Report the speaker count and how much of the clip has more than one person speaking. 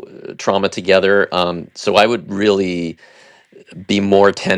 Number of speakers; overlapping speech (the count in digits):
1, no overlap